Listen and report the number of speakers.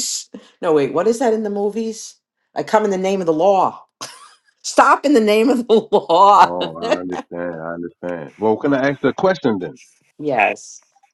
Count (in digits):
2